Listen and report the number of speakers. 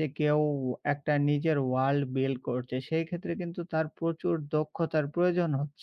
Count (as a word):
one